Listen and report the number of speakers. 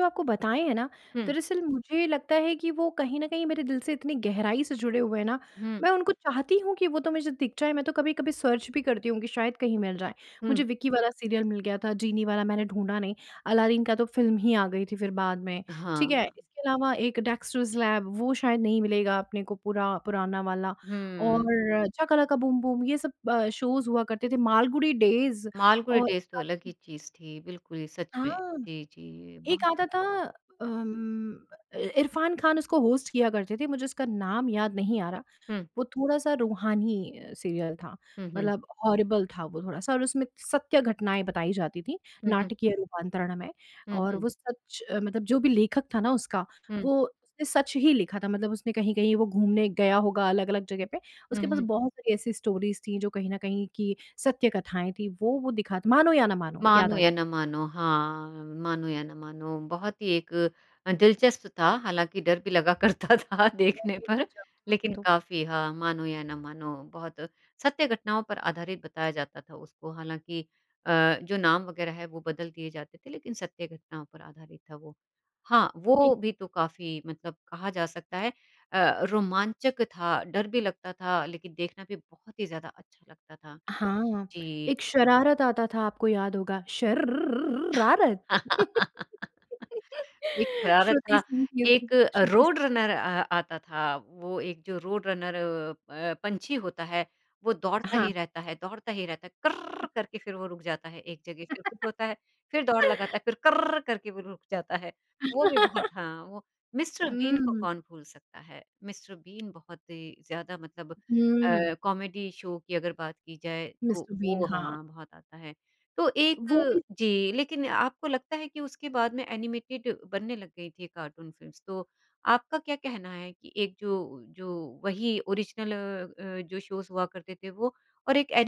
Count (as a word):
two